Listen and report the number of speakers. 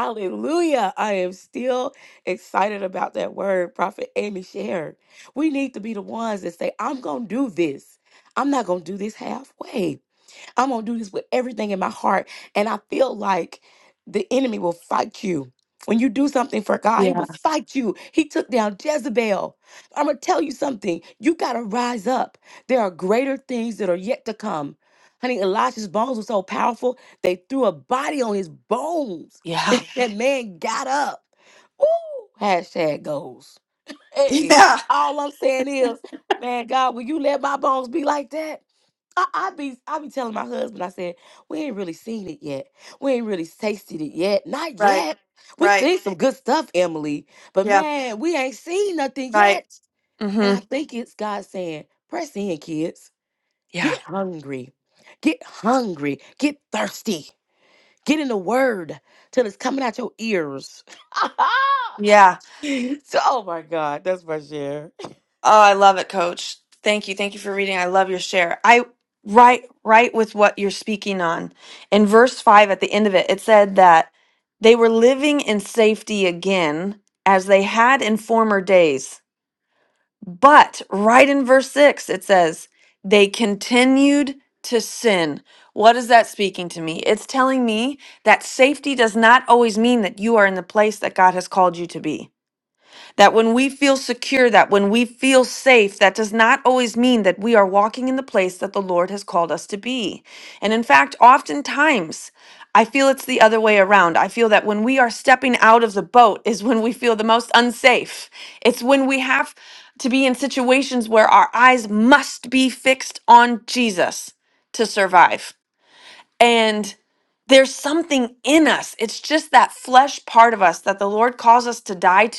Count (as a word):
two